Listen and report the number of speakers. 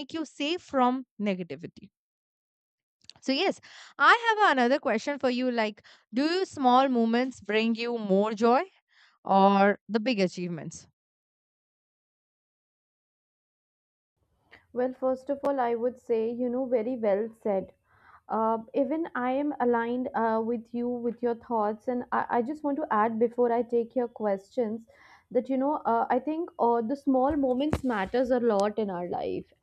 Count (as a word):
two